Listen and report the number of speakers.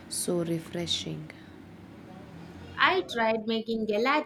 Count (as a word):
two